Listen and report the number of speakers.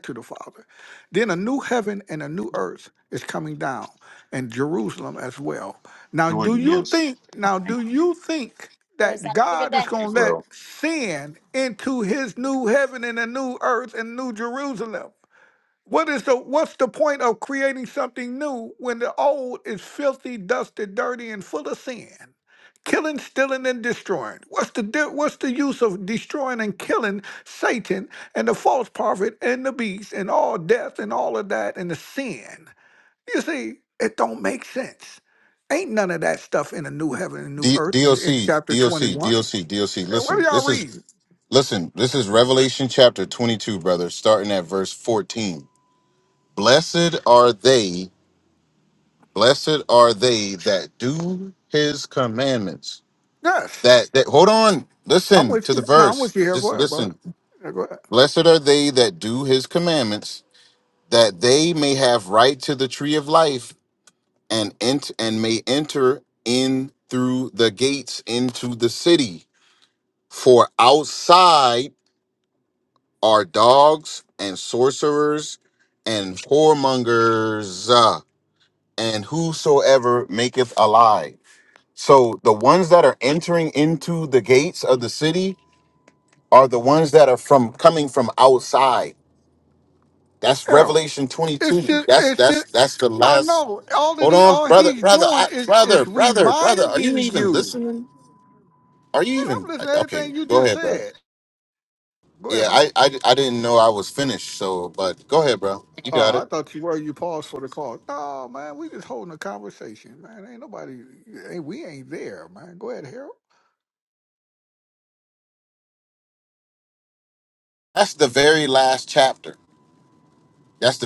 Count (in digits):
2